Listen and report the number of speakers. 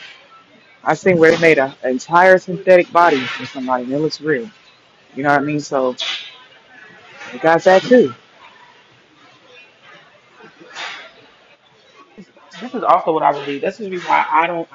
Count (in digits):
2